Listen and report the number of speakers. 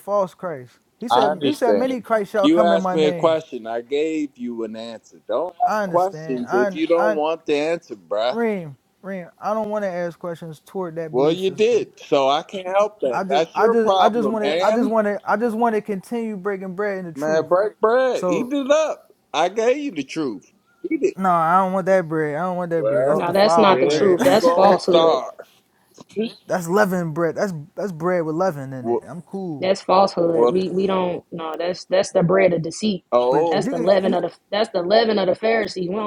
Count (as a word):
three